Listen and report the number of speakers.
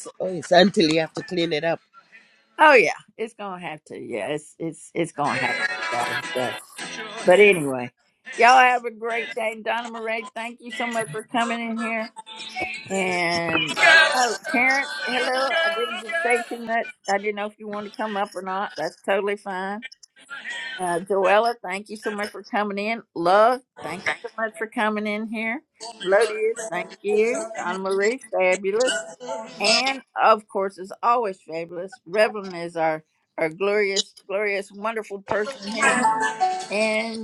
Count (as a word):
two